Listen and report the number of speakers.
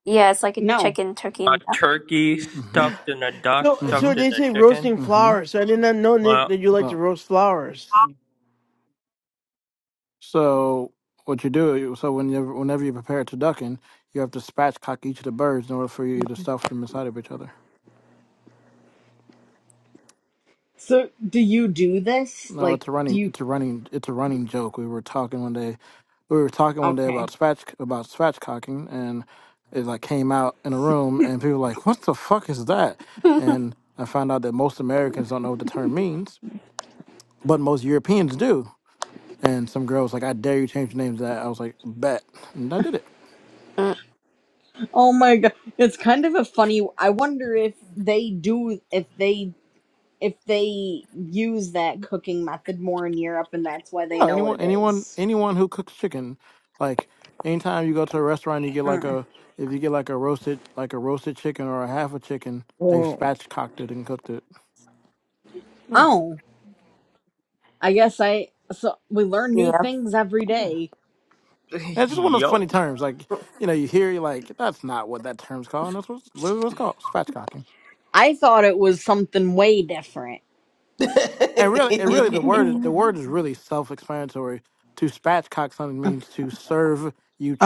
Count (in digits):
5